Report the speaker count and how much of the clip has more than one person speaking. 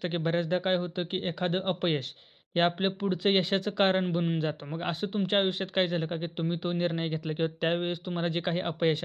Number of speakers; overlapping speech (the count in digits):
1, no overlap